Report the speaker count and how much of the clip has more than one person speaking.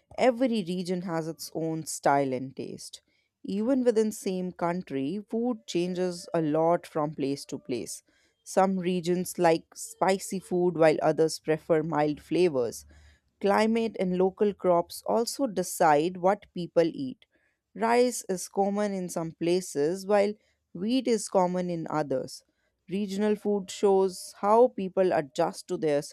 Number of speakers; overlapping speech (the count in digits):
1, no overlap